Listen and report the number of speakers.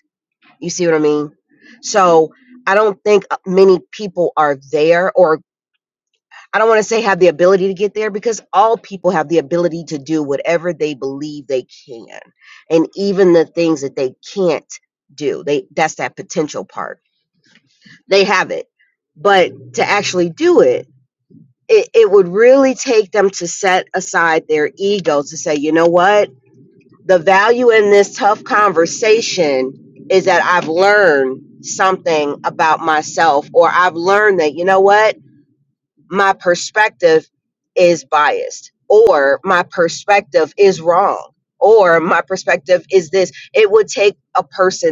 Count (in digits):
1